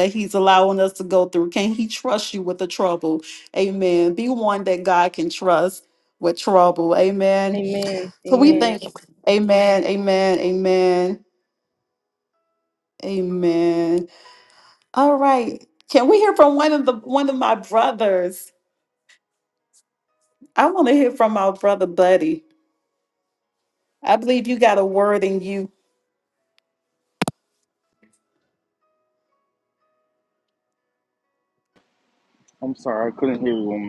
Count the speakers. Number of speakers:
3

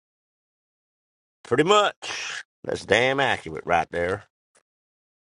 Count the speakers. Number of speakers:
1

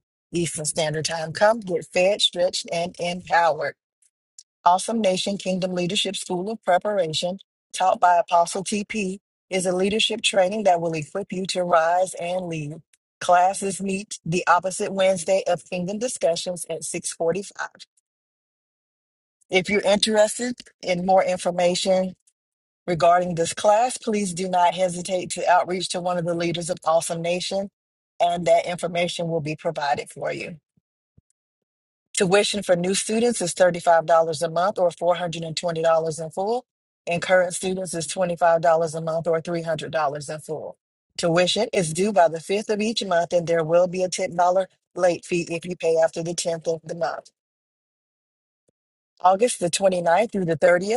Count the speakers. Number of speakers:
1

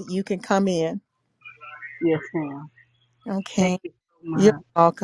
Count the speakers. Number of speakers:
2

